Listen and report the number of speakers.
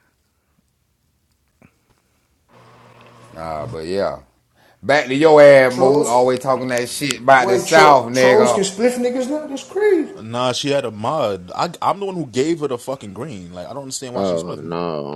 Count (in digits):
4